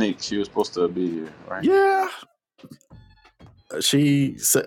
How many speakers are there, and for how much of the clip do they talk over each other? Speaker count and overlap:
2, about 1%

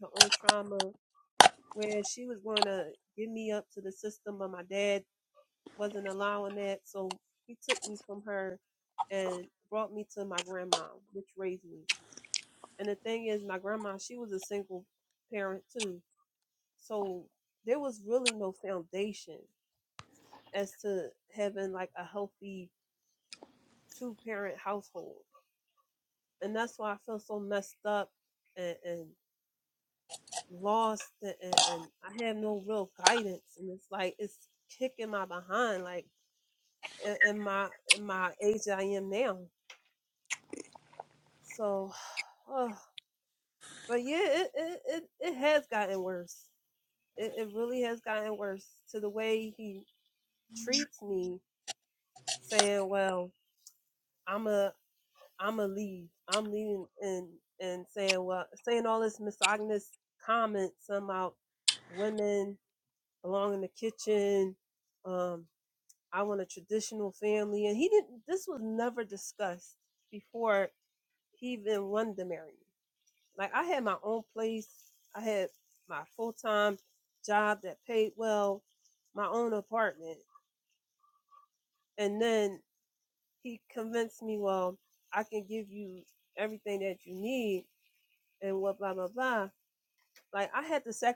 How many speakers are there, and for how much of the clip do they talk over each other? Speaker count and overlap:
1, no overlap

